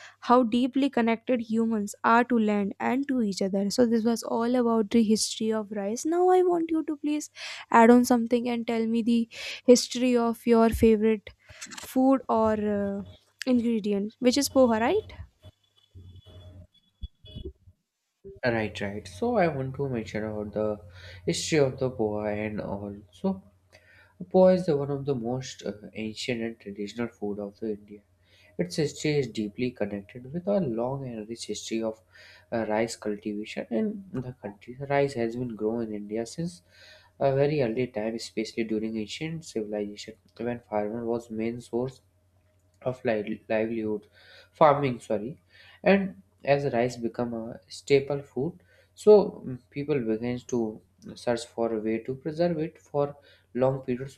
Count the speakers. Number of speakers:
two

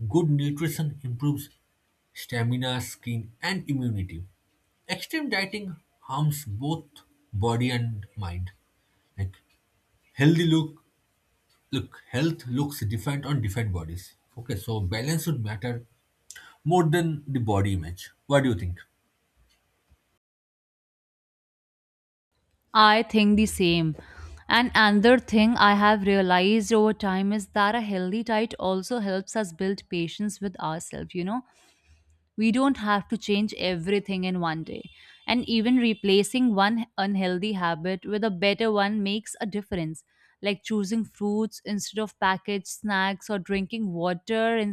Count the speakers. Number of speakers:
two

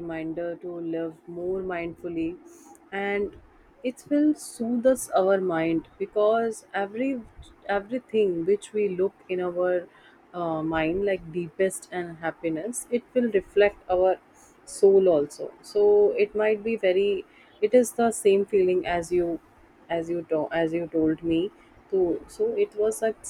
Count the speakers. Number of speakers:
one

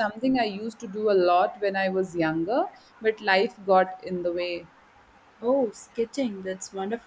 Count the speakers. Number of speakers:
two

